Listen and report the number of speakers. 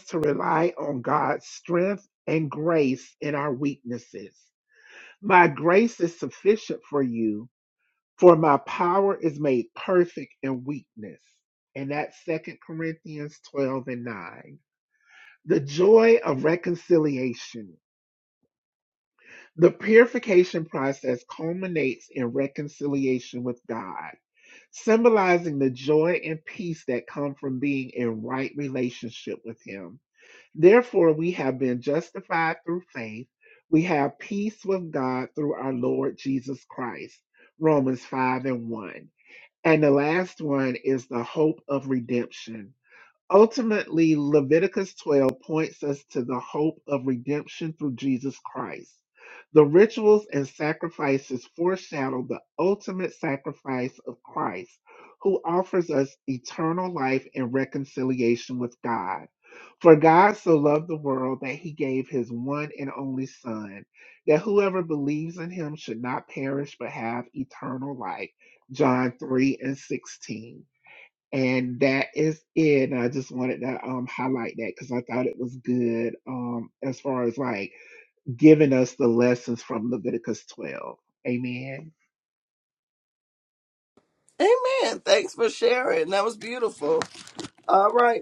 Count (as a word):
two